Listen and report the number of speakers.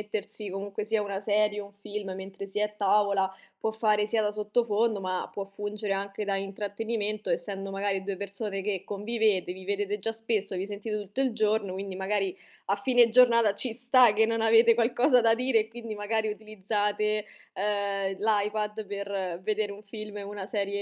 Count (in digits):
1